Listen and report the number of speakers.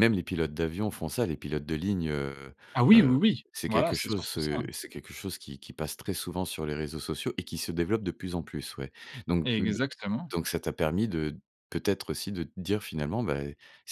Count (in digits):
2